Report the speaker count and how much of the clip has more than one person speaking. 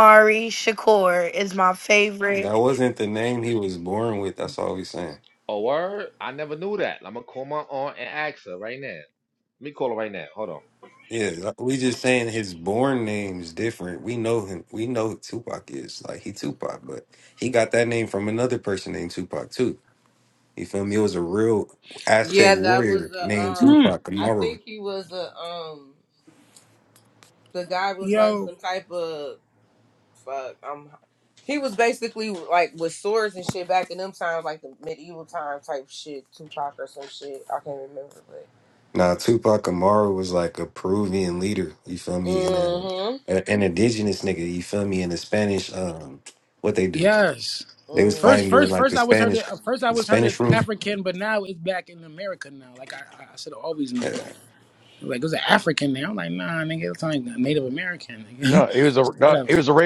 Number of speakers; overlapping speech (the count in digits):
6, about 11%